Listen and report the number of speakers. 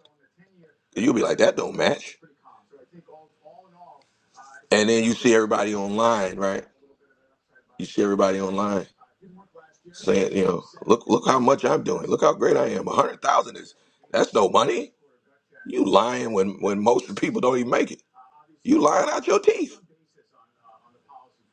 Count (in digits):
1